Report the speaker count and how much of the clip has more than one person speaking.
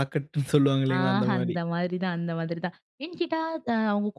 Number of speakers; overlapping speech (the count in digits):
2, about 9%